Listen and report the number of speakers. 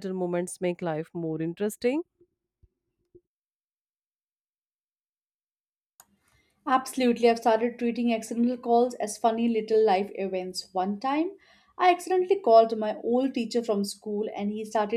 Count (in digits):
2